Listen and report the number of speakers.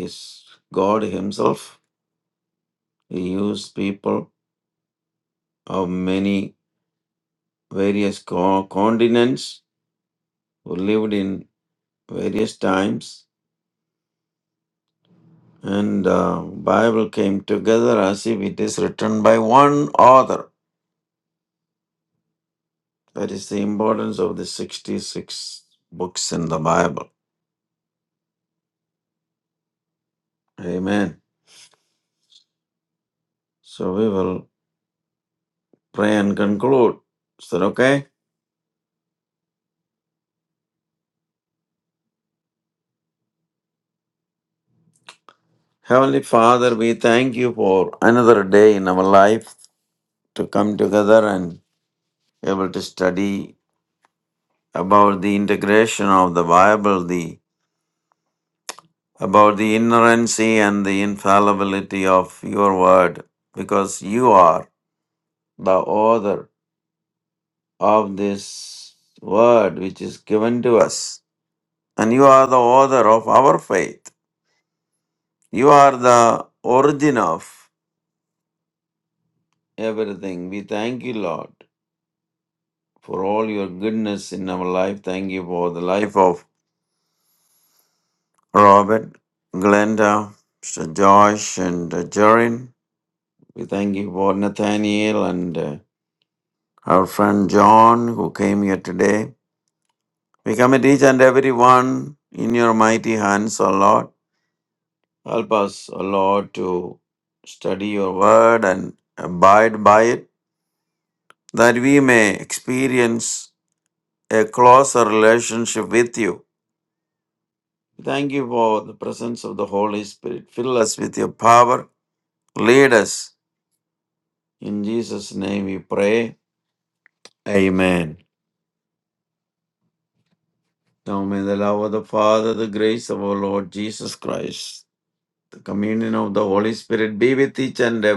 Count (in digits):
1